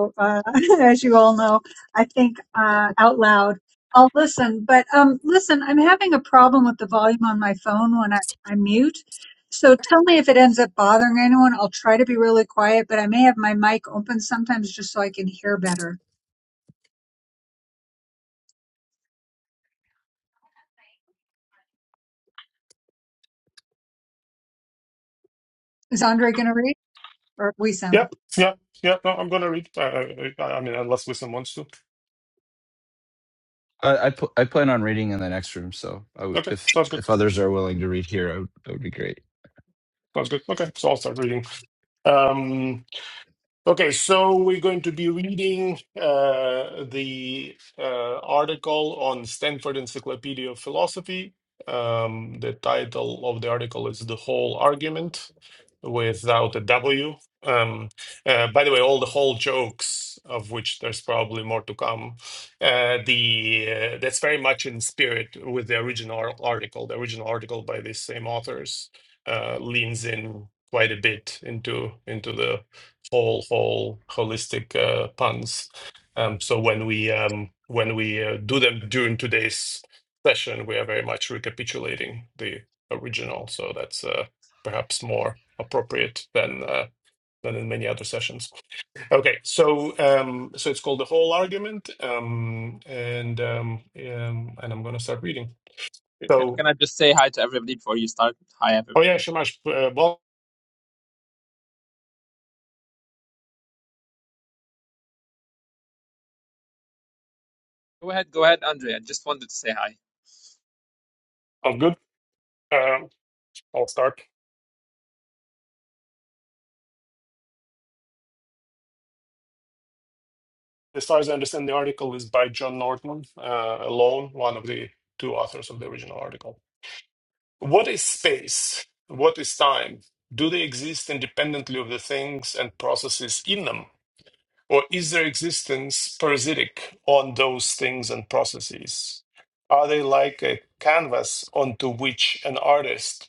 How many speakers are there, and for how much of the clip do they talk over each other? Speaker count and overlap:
4, about 1%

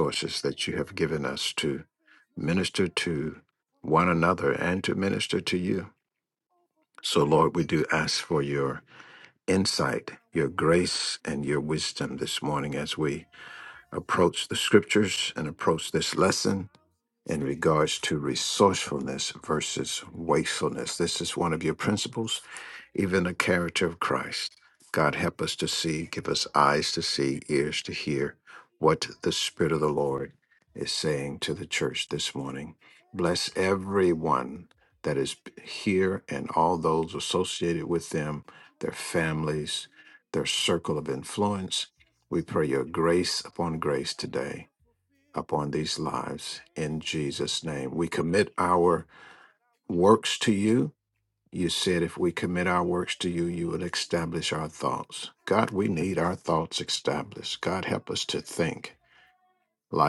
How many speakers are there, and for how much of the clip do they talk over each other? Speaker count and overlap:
2, about 26%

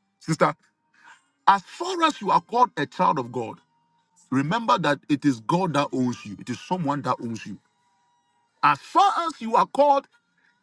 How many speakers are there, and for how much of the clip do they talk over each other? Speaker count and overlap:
1, no overlap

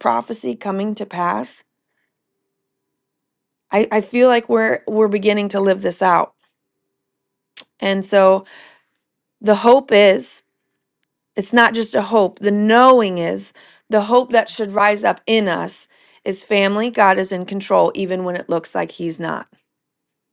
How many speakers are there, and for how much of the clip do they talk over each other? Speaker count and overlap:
1, no overlap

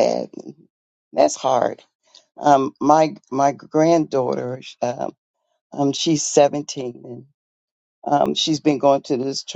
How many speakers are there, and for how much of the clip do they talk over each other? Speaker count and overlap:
1, no overlap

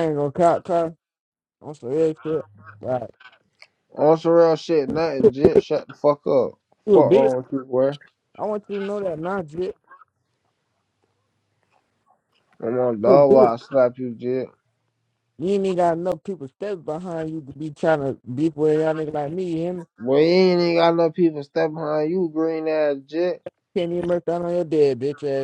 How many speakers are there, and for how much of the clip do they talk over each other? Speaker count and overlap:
2, about 3%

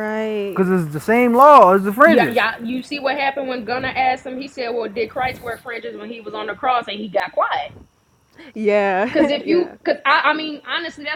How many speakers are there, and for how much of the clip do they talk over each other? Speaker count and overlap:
3, about 10%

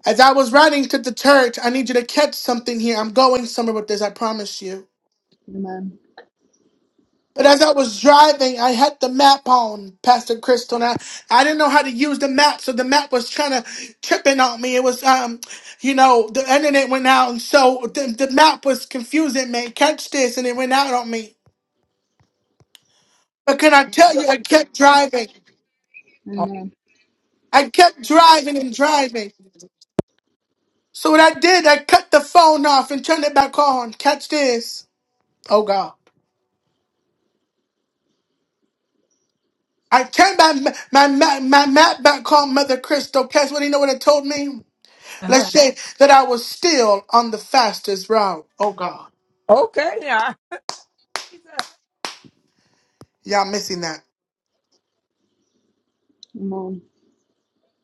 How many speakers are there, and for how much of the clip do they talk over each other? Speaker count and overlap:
3, about 1%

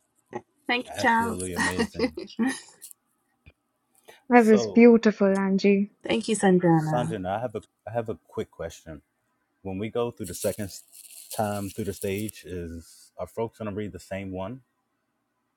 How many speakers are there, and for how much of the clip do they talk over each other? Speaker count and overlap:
3, about 7%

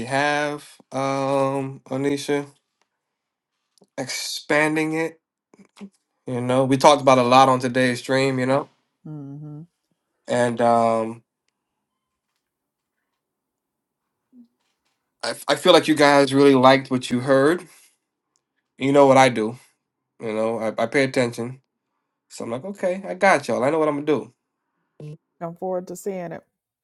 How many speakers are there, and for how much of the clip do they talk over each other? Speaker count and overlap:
2, no overlap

